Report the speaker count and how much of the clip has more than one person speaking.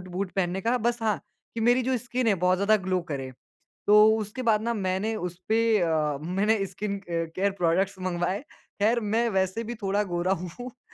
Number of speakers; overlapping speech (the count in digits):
1, no overlap